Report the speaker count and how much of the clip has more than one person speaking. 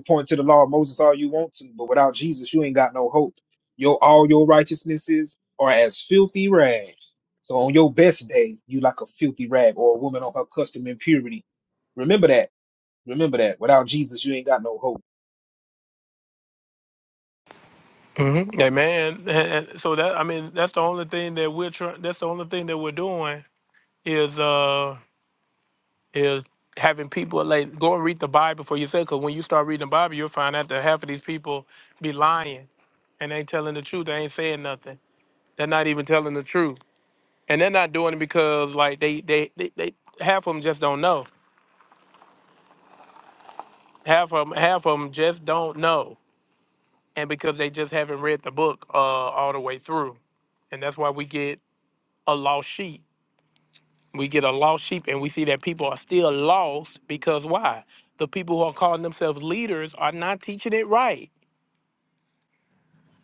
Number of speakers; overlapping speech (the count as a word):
two, no overlap